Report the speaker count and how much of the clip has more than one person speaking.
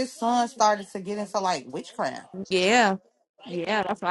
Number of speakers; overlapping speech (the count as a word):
two, no overlap